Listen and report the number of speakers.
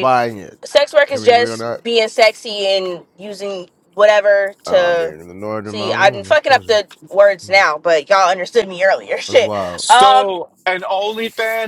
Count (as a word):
three